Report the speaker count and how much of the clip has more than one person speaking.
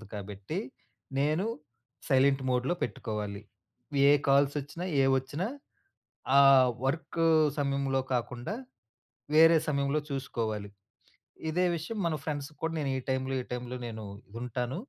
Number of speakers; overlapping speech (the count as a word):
one, no overlap